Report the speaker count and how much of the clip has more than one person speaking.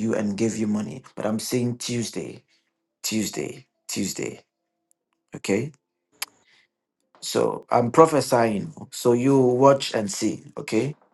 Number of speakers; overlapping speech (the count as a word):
one, no overlap